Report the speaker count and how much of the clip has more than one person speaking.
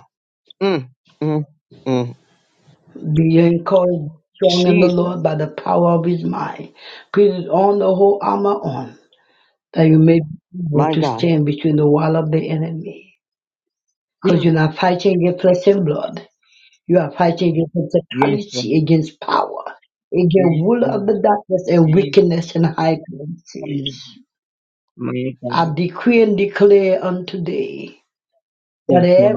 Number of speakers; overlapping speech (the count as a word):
two, about 13%